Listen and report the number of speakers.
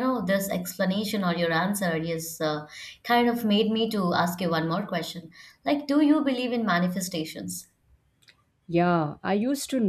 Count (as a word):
two